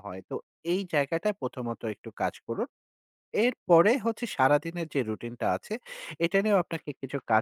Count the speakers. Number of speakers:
1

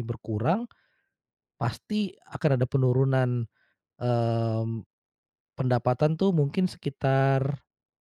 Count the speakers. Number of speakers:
1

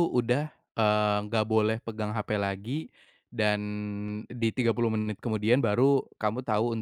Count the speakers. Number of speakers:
1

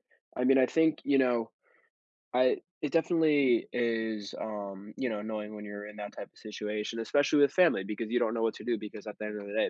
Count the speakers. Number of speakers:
1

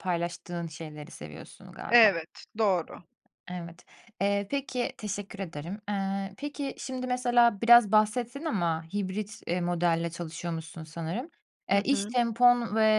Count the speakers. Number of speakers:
2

